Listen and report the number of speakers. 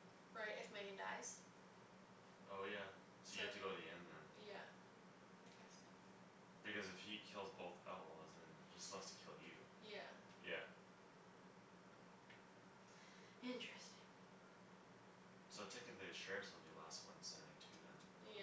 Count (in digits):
2